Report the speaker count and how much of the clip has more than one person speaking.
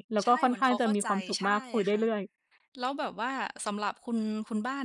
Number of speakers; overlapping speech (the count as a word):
two, about 31%